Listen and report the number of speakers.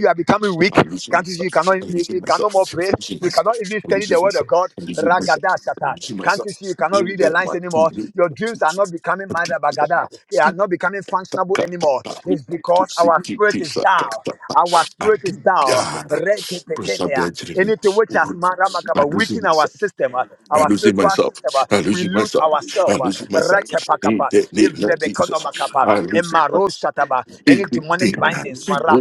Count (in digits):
2